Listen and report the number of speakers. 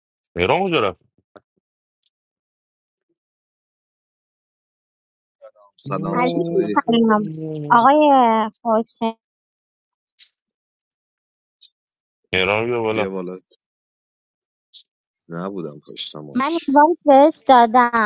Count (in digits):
3